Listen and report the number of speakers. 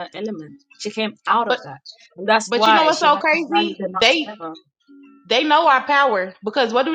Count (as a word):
two